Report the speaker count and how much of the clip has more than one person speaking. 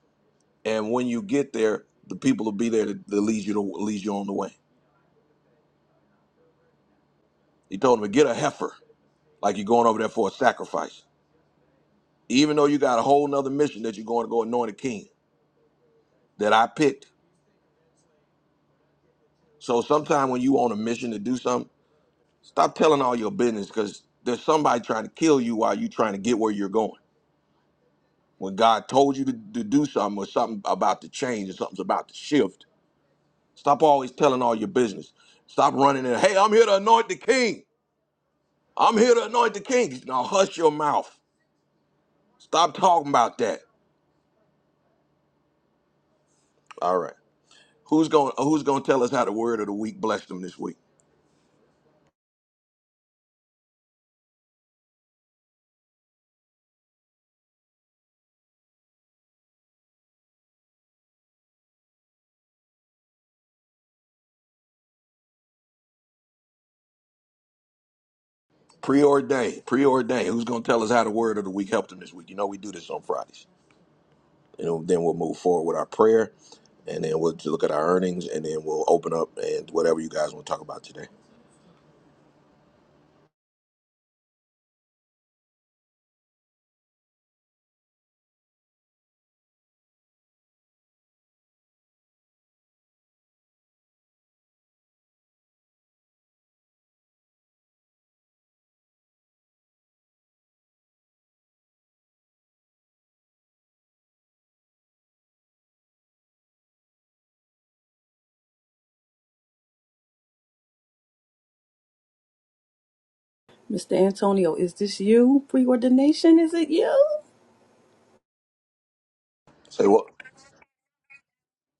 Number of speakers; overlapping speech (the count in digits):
2, no overlap